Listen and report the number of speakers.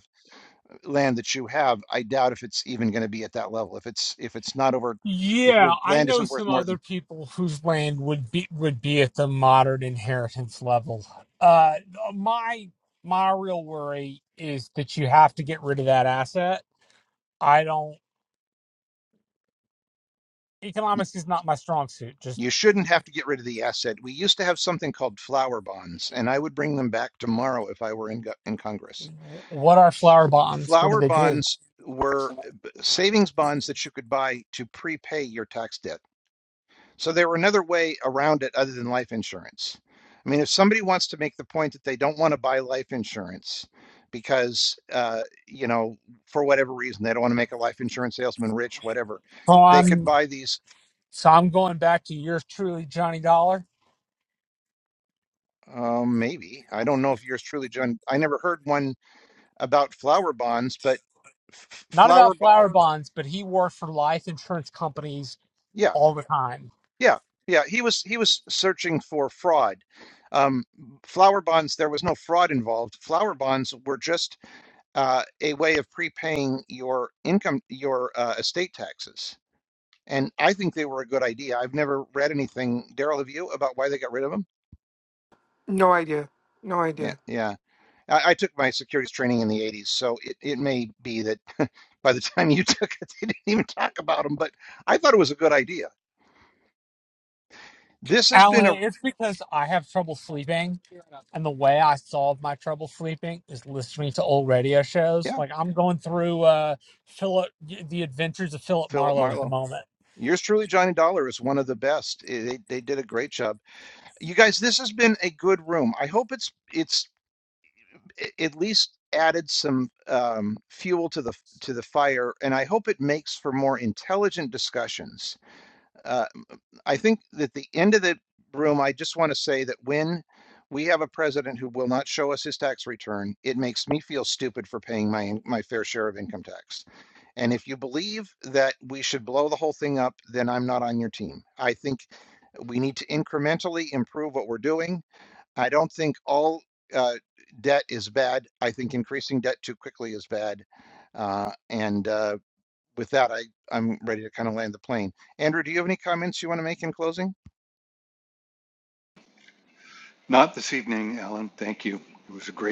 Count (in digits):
4